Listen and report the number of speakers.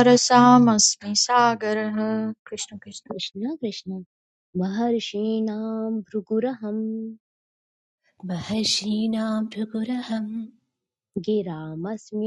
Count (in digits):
3